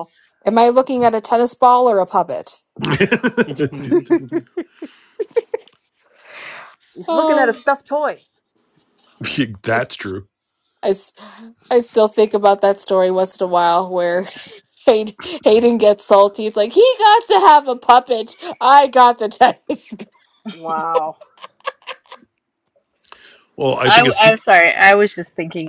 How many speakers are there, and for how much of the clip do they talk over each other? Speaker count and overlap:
4, about 4%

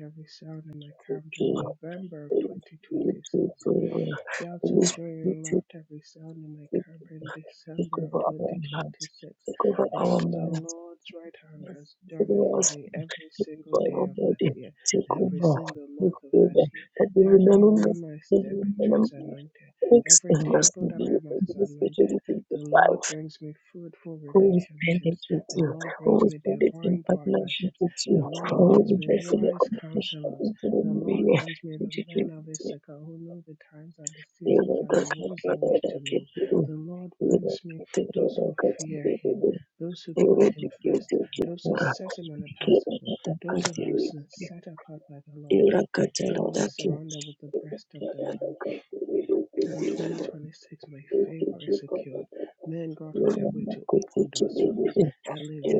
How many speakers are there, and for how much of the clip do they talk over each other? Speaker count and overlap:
2, about 39%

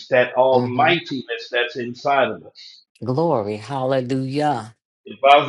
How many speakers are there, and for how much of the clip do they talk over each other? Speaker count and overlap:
2, about 8%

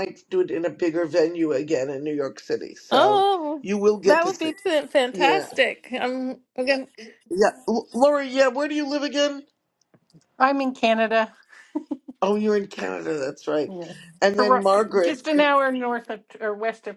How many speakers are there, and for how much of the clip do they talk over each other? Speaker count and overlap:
3, about 12%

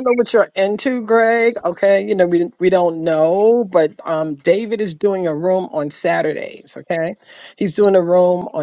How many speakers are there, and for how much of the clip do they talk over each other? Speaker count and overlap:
1, no overlap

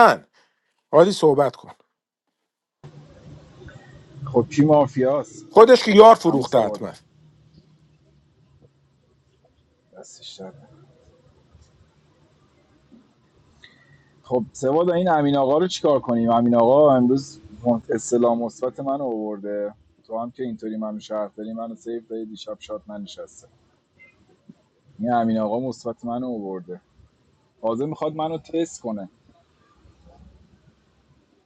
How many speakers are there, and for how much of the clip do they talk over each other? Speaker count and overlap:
2, about 2%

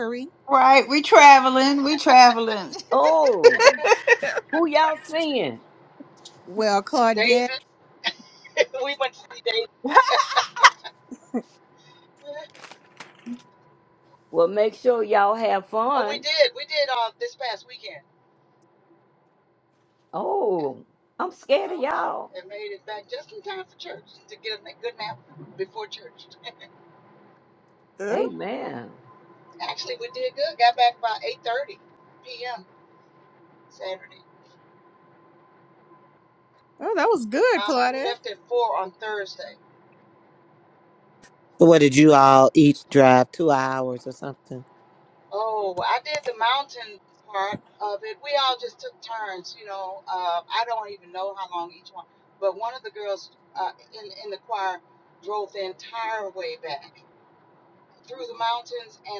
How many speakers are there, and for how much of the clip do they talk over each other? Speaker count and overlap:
5, about 3%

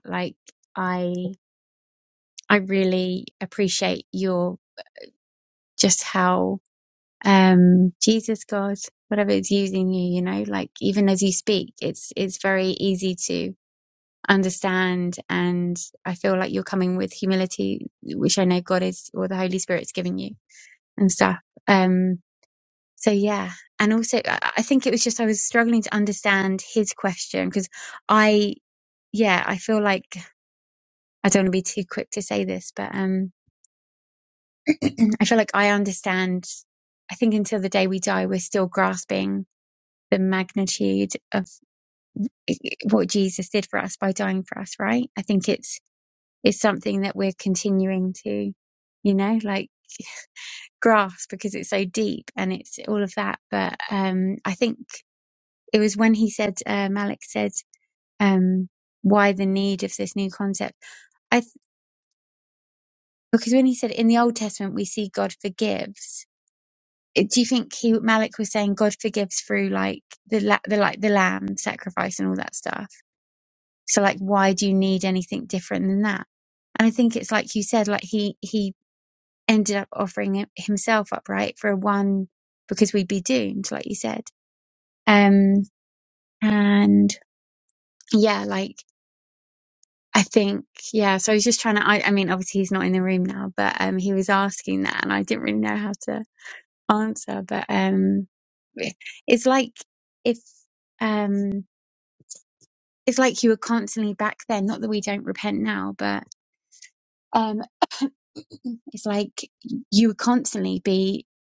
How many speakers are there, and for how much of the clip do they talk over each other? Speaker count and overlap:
1, no overlap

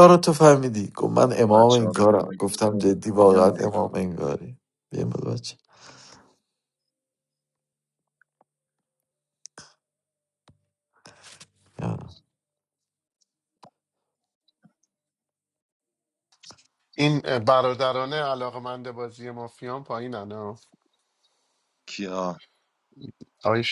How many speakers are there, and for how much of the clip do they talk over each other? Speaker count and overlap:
3, about 7%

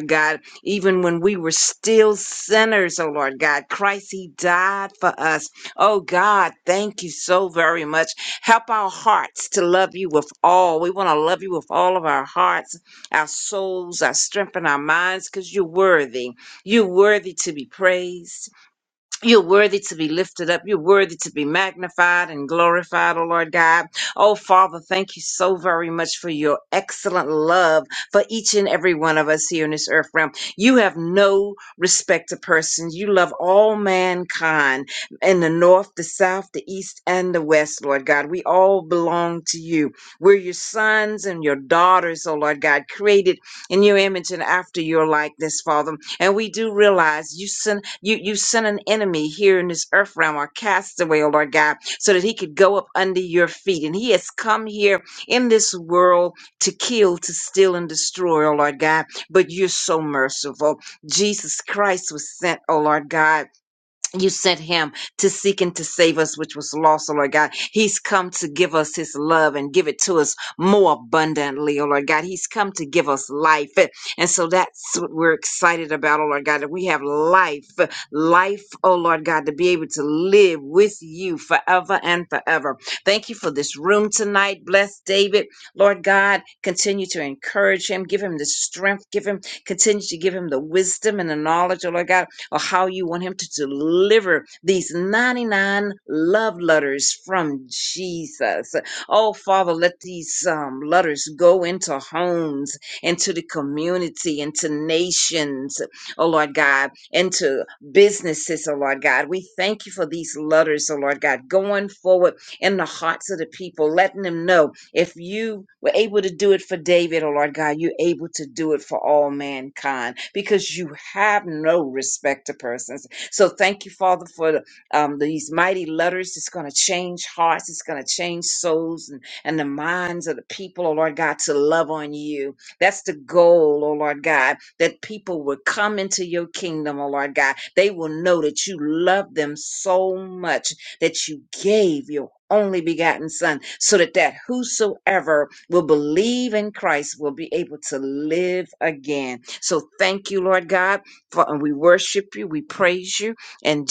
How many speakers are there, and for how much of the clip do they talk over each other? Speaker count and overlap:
1, no overlap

